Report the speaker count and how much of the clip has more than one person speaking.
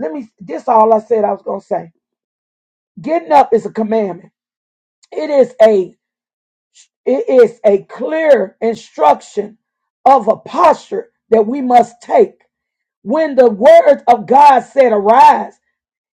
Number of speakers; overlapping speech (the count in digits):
1, no overlap